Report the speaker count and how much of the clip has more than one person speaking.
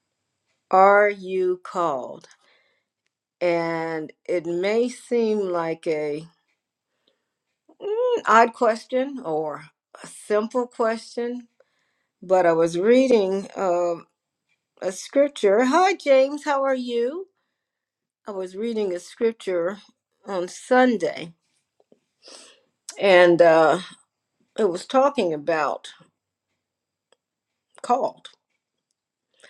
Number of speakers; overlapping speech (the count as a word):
one, no overlap